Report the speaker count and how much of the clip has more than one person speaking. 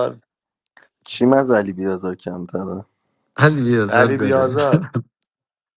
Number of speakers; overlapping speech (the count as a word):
three, about 12%